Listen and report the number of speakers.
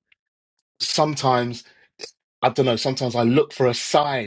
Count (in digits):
1